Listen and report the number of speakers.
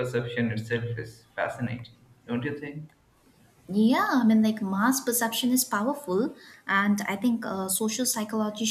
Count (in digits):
2